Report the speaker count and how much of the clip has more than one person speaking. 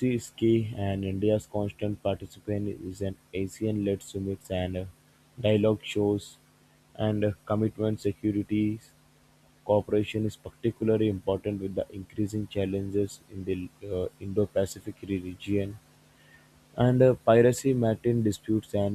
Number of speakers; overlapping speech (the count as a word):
one, no overlap